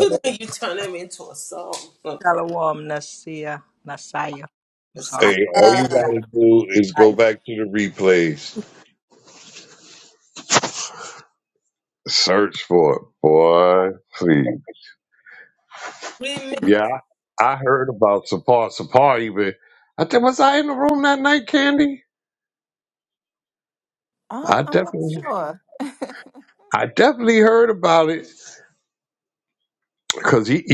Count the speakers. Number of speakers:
four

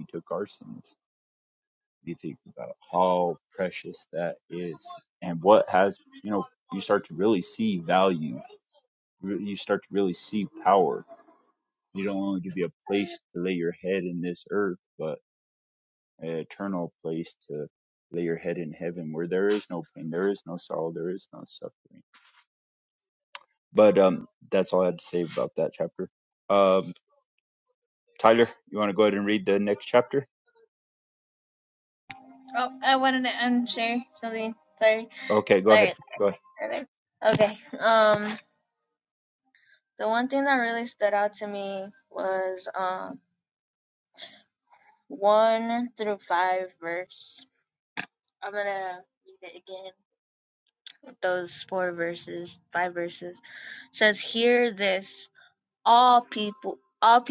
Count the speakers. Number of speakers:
two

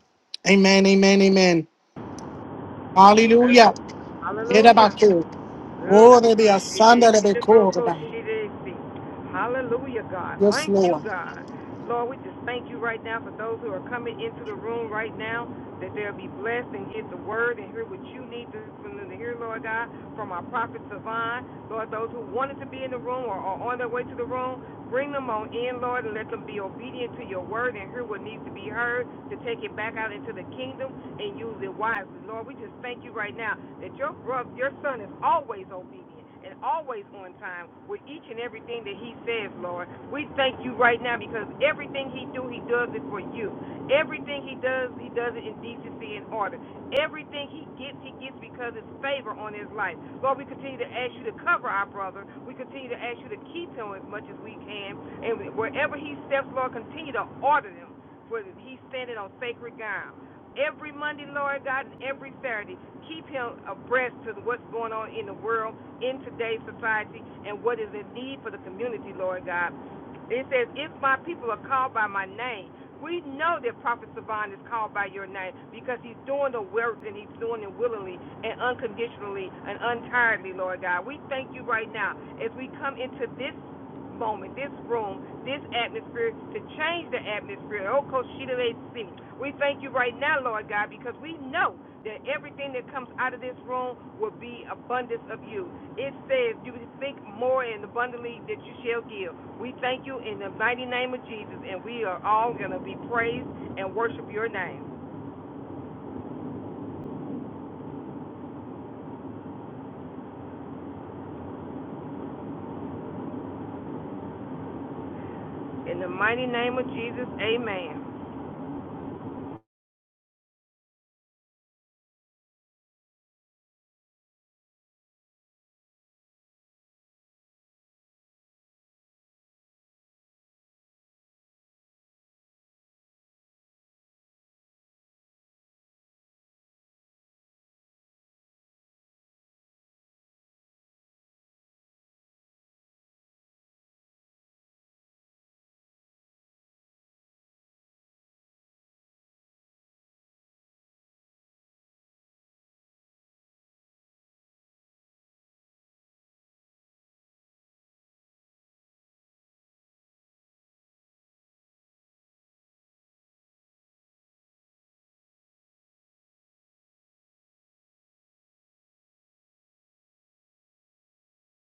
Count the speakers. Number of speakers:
two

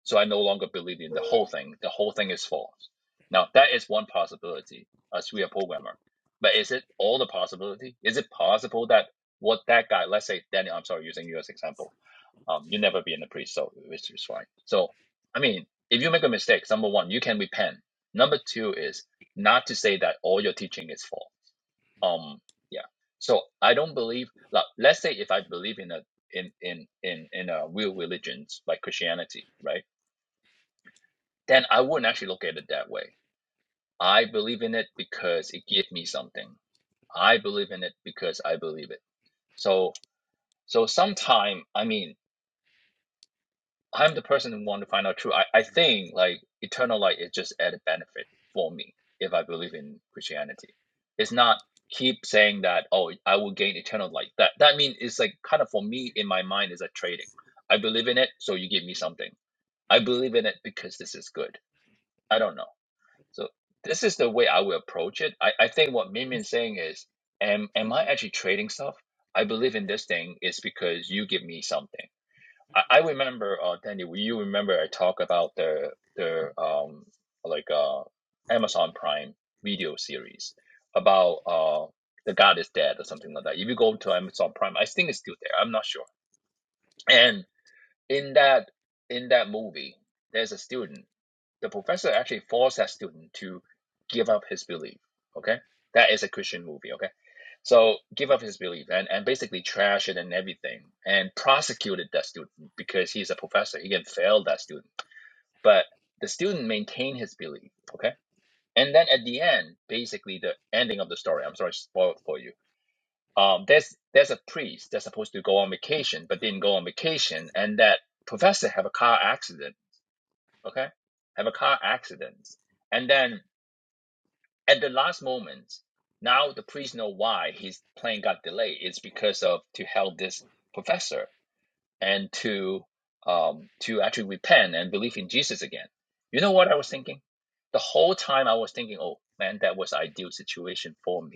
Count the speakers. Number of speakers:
one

